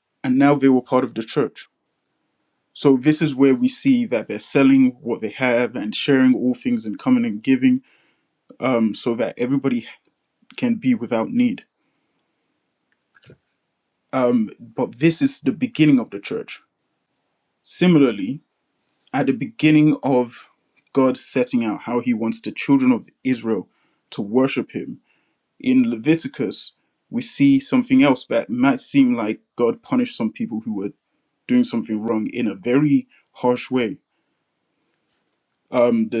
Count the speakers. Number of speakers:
1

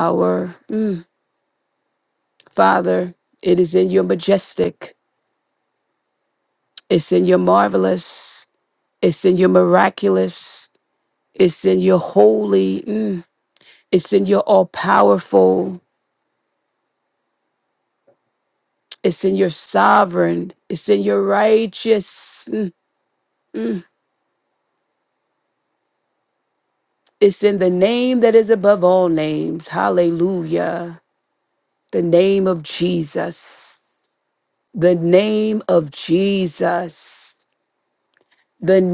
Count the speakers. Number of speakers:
1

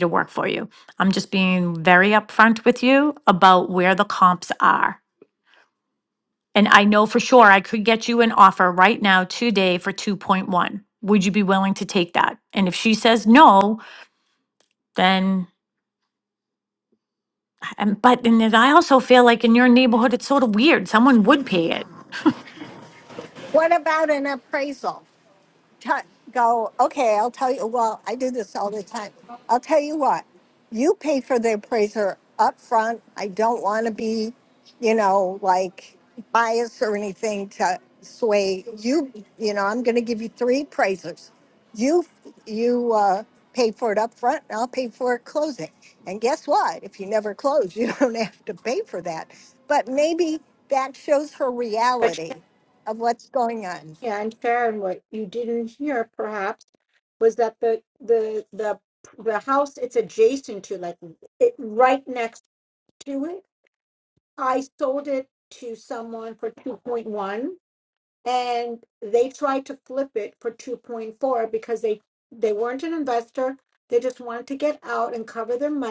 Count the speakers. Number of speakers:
3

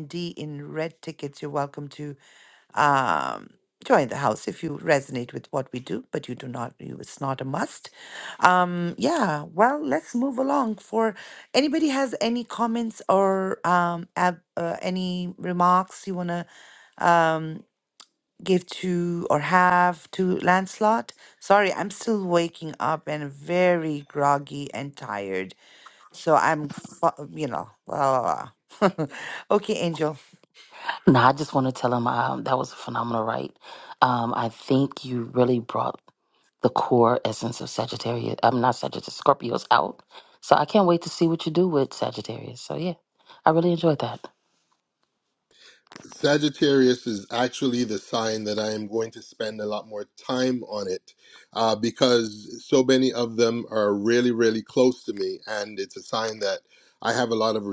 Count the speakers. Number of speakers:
3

